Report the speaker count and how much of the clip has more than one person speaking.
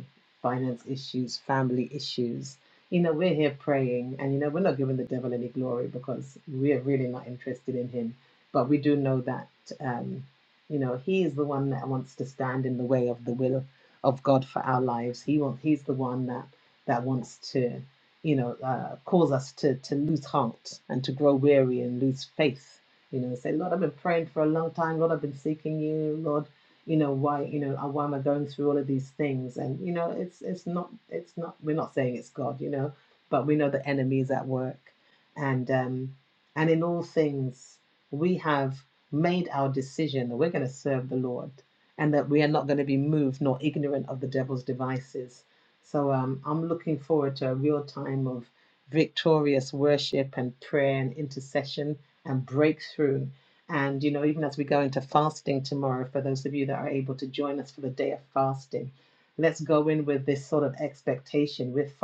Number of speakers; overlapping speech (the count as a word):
one, no overlap